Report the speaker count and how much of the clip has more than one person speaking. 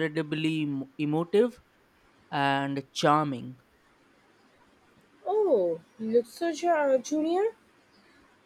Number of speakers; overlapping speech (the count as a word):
two, no overlap